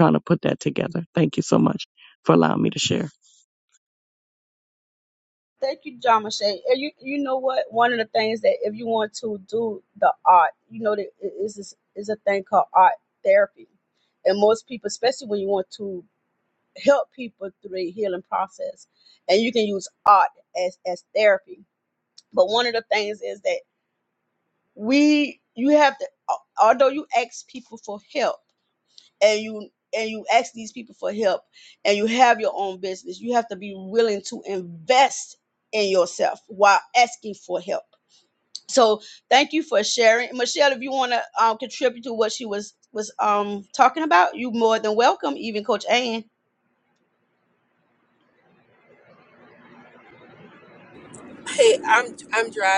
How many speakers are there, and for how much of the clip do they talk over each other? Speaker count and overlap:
3, no overlap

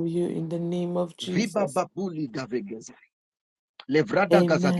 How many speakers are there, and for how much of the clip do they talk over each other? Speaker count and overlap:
2, about 20%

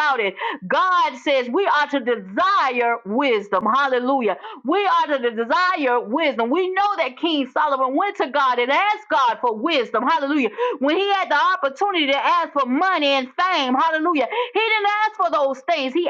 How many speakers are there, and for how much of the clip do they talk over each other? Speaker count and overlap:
1, no overlap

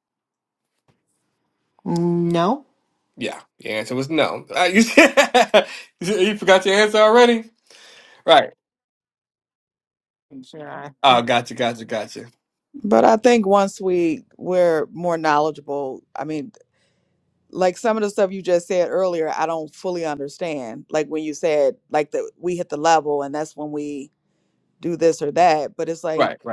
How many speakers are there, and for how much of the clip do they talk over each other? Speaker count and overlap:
3, under 1%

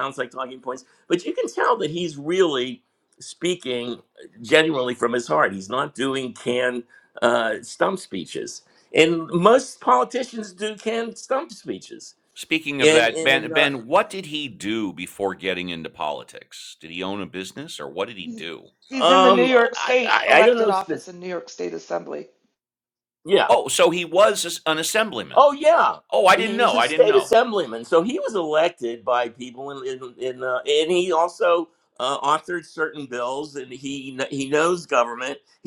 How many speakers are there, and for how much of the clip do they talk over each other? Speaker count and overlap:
3, about 12%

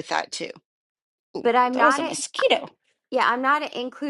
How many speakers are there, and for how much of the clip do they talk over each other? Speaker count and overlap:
2, about 12%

